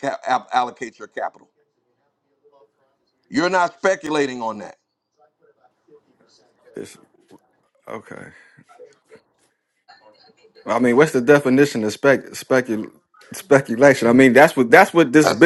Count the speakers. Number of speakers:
two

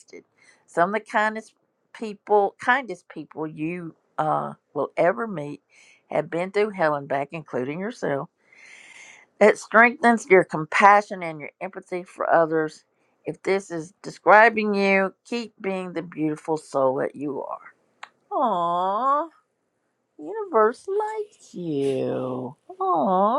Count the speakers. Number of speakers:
one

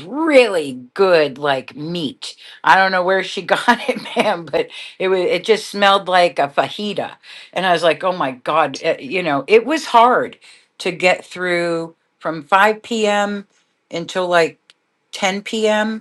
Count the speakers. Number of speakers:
one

